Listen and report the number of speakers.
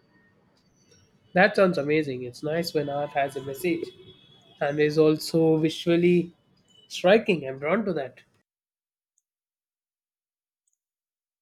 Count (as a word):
one